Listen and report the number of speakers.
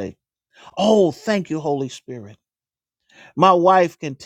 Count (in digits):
1